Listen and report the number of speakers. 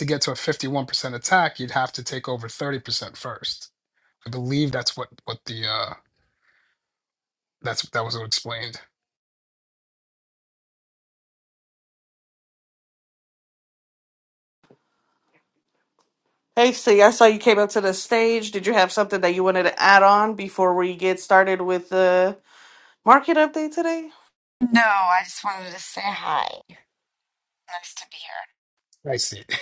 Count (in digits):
3